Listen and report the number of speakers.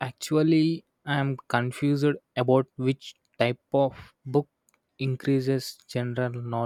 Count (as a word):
one